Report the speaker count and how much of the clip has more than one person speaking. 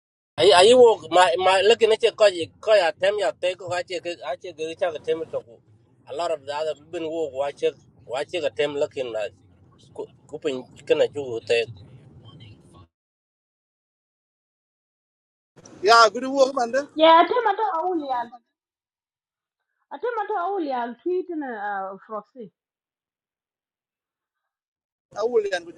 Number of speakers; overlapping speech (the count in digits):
3, no overlap